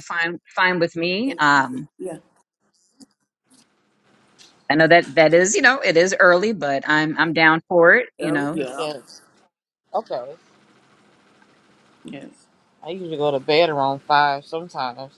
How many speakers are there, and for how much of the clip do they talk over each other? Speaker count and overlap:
three, about 5%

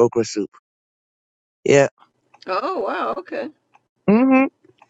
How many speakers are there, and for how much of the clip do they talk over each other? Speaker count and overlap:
two, no overlap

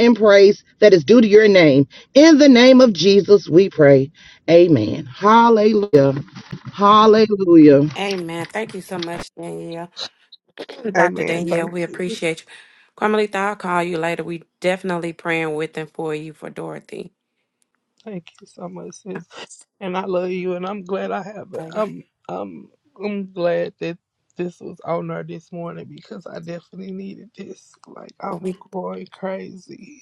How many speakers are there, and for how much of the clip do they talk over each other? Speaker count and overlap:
three, about 4%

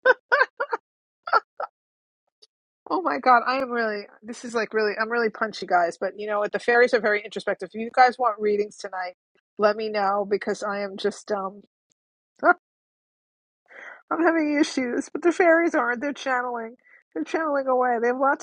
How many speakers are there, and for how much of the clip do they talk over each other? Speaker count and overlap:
one, no overlap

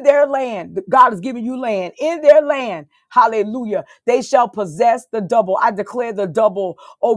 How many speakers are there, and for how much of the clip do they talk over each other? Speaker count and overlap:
one, no overlap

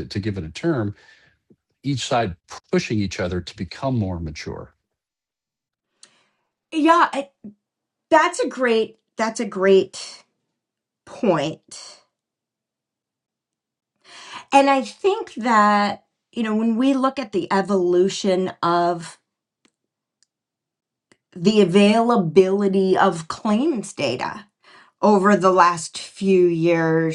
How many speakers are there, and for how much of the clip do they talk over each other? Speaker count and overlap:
two, no overlap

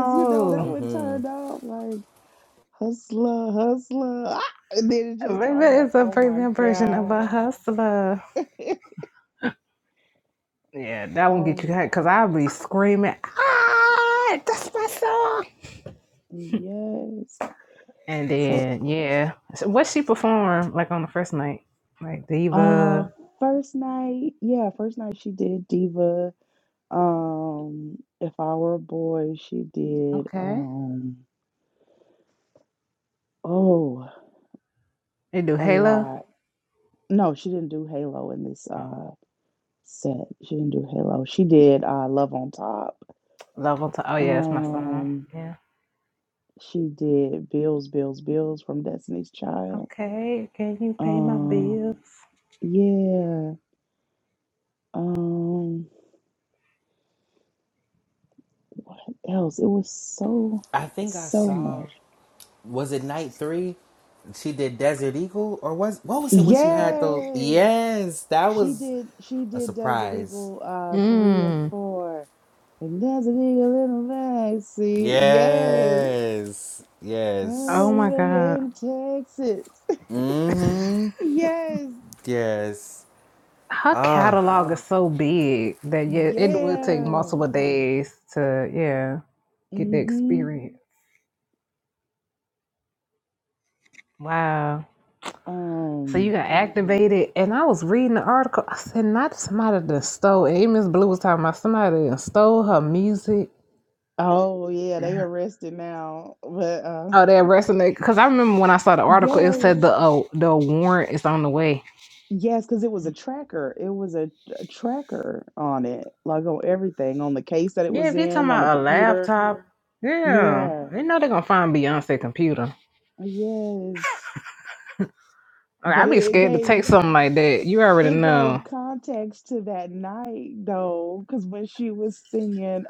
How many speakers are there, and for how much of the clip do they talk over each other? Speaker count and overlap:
three, about 15%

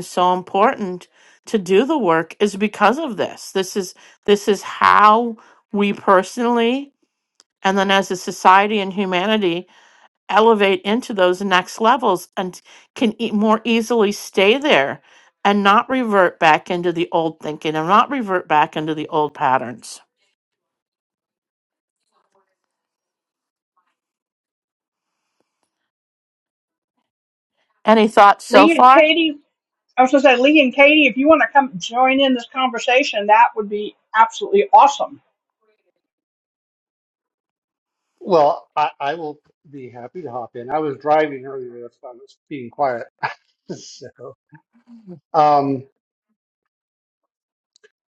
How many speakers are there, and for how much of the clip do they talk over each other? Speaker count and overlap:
three, about 1%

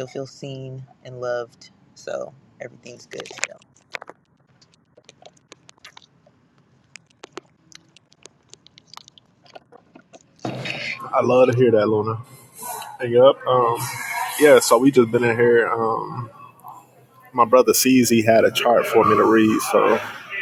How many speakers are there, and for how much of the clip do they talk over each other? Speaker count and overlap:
two, no overlap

